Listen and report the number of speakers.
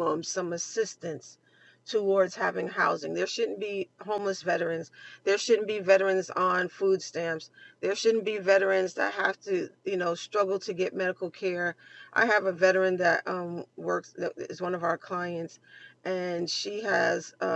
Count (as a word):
one